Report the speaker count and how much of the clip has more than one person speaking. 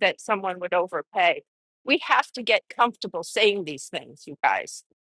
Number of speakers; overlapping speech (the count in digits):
1, no overlap